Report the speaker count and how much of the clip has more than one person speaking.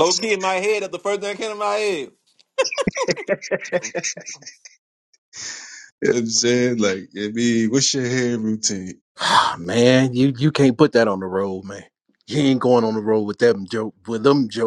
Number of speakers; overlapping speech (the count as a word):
three, no overlap